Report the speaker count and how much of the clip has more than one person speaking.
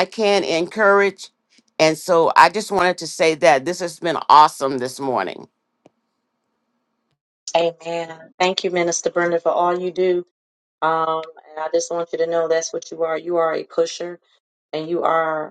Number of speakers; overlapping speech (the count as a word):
two, no overlap